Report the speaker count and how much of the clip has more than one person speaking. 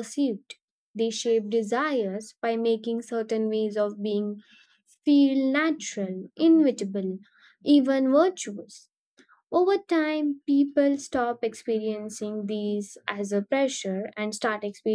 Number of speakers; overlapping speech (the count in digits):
1, no overlap